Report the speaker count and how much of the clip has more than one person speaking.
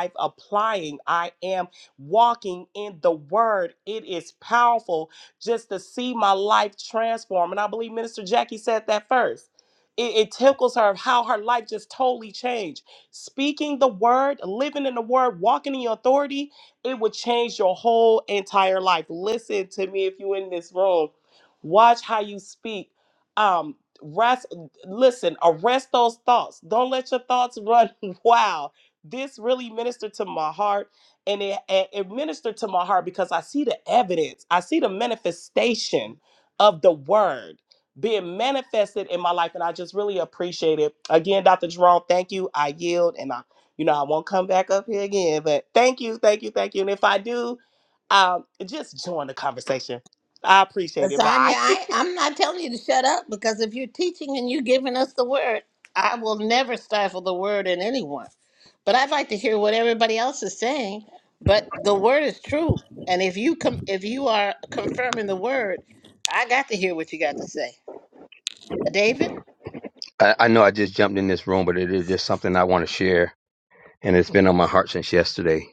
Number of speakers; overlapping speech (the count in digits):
3, about 1%